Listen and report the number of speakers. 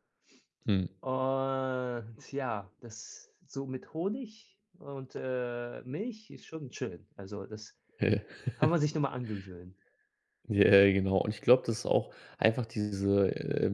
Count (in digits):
2